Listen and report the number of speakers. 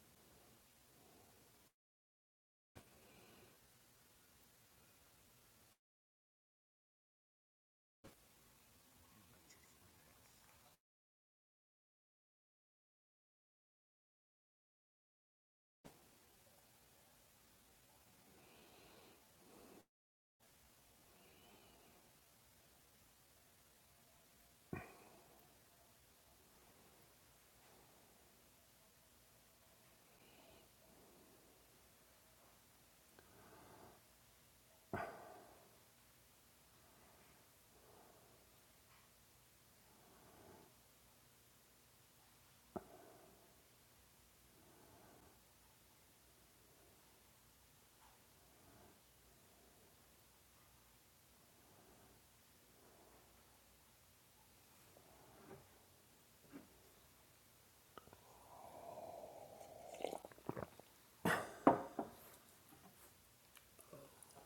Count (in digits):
0